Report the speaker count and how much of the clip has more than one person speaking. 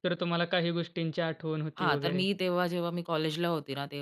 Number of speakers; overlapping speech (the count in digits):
2, about 12%